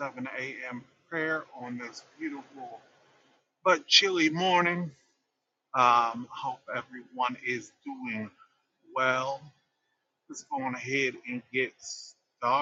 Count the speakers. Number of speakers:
1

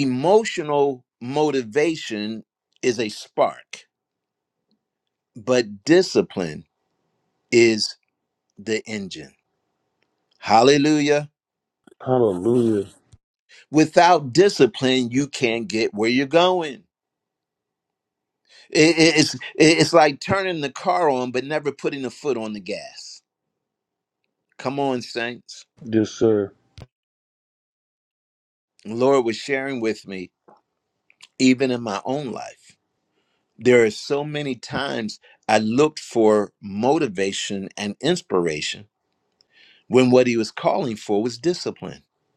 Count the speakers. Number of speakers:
2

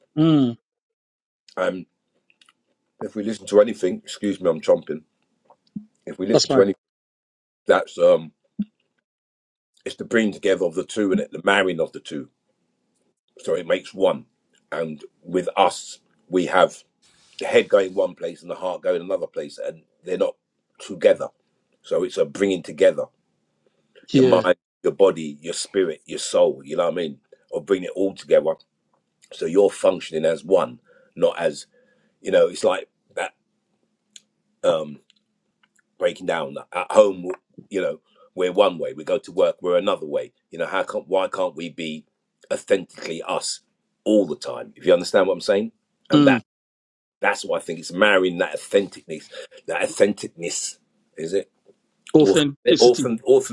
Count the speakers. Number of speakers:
2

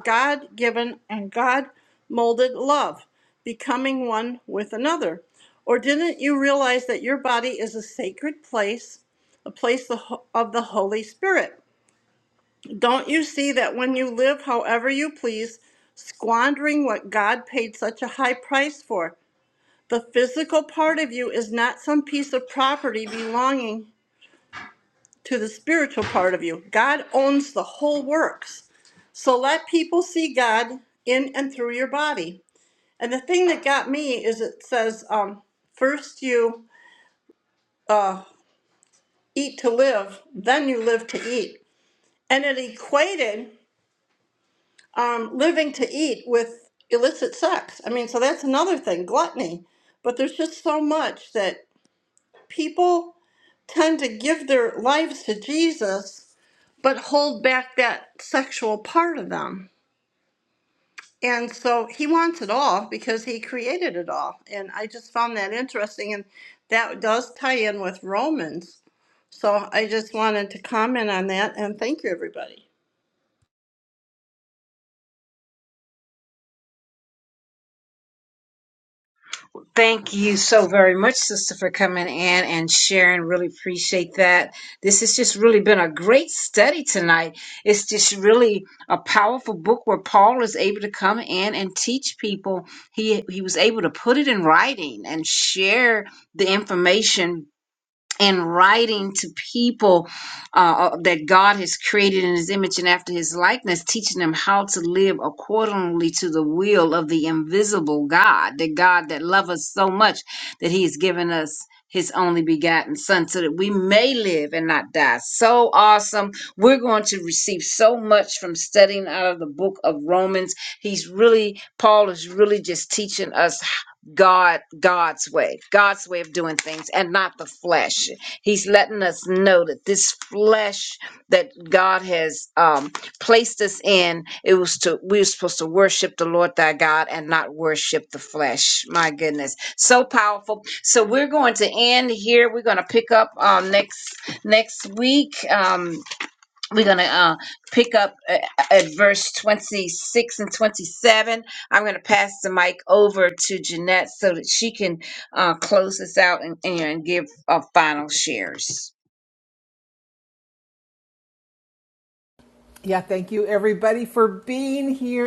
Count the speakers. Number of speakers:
3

